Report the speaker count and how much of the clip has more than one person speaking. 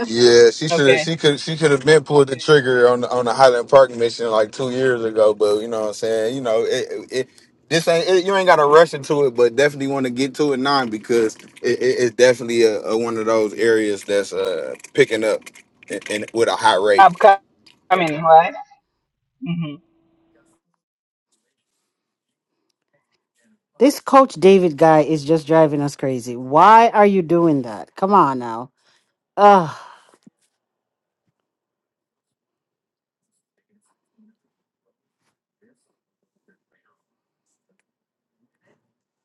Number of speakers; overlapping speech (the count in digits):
3, about 1%